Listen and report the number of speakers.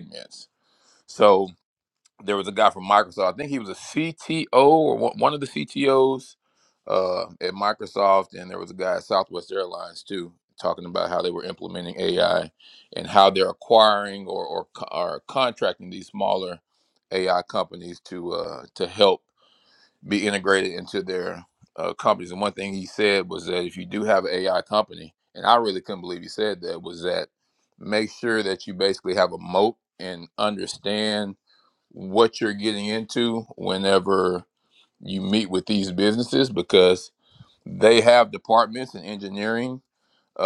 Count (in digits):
1